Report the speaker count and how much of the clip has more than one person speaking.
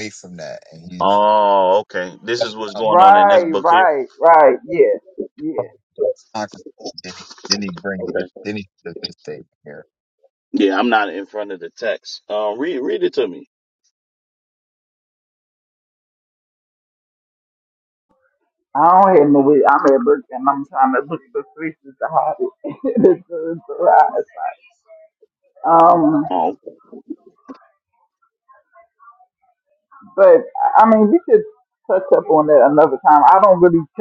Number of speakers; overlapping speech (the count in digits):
3, about 5%